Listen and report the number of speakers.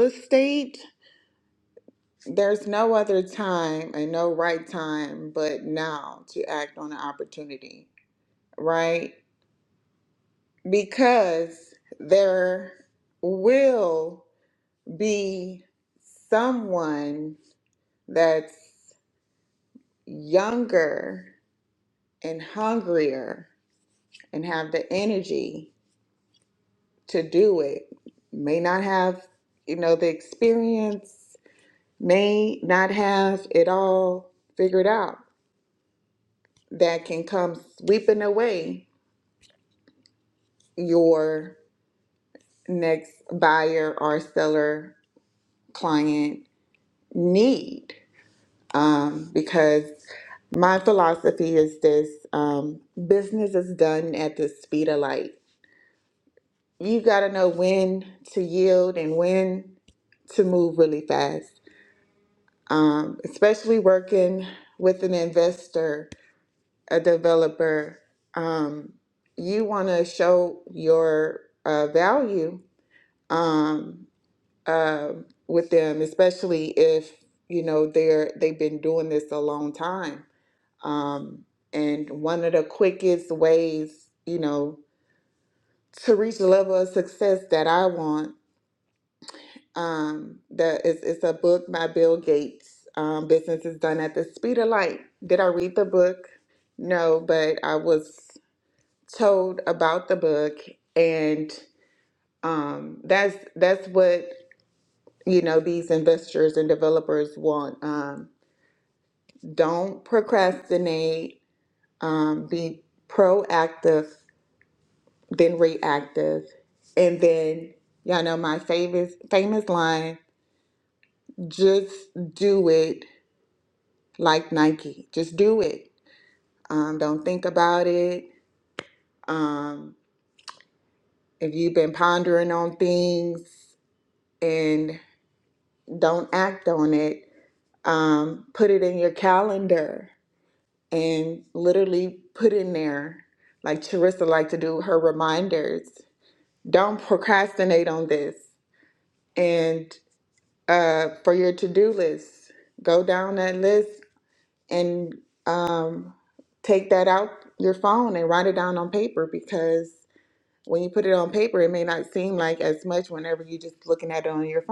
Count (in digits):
1